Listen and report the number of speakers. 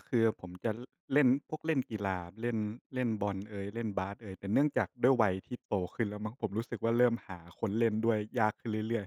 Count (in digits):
1